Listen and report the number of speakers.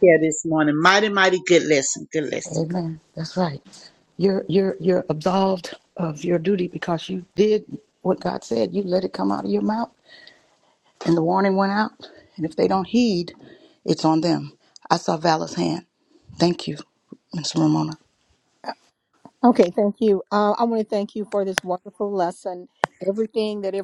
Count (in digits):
3